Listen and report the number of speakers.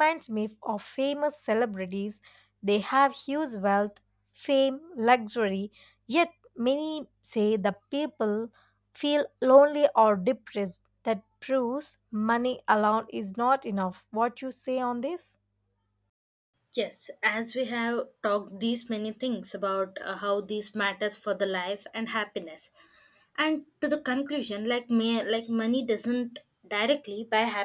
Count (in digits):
2